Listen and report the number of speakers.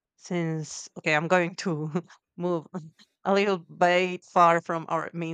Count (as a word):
one